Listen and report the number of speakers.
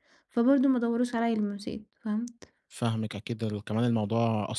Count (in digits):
2